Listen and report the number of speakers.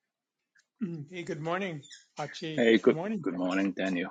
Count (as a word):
two